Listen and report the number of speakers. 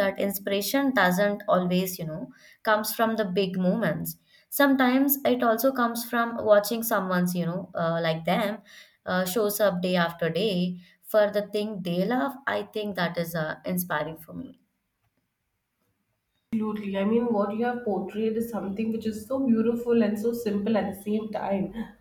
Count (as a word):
two